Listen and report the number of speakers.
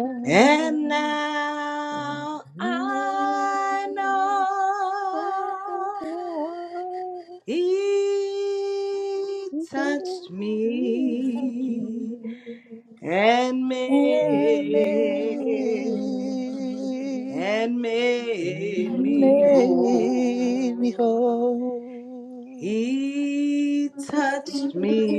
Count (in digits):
3